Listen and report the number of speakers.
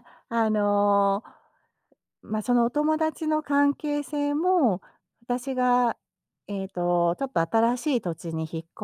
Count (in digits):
1